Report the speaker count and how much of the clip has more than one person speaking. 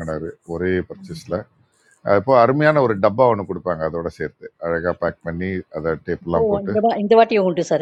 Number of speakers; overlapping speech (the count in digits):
2, about 6%